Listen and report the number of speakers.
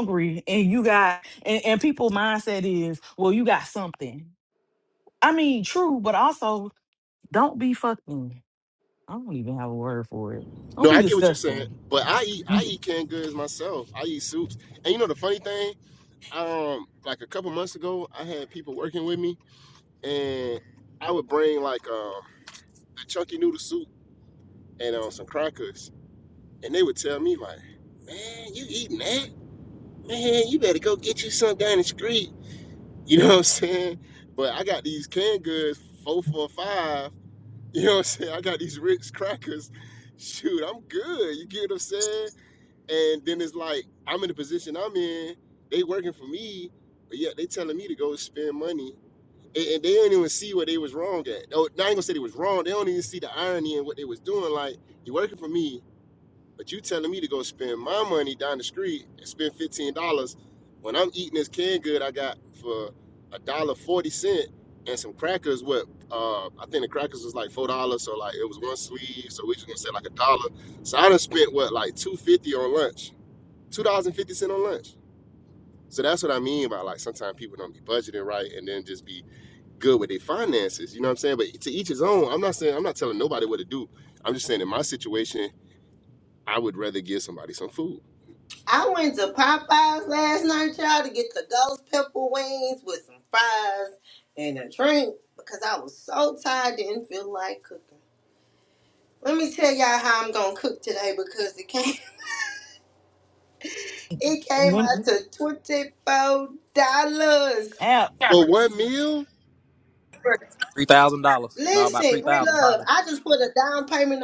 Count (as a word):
four